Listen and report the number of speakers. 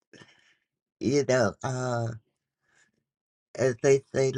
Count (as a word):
one